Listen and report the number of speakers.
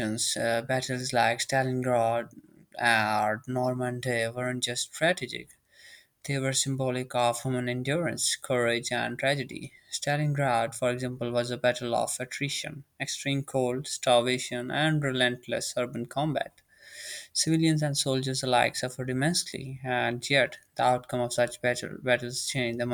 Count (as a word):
one